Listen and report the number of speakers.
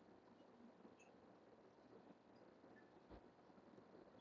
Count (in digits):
0